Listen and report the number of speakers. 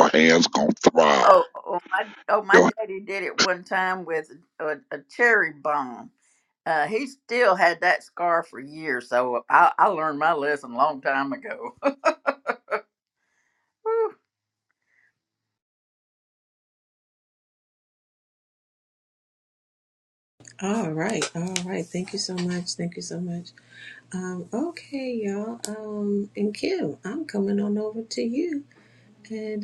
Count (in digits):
3